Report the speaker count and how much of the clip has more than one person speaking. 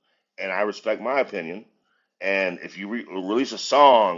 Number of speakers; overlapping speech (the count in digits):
1, no overlap